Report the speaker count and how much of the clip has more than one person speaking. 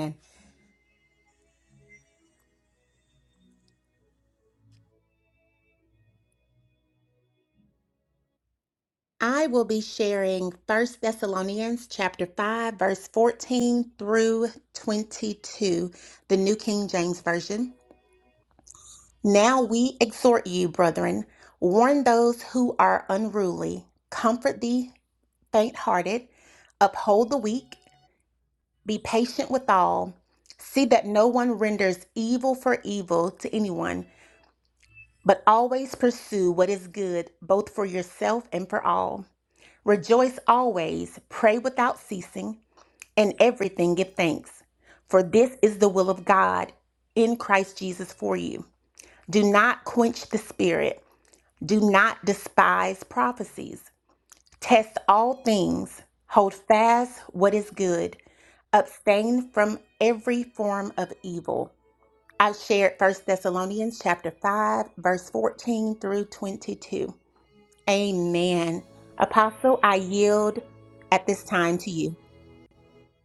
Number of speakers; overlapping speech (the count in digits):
1, no overlap